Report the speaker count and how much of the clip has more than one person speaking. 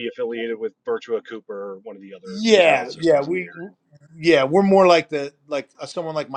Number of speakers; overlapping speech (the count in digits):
2, about 18%